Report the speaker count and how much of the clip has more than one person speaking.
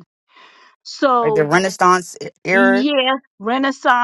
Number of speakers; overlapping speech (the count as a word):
two, about 14%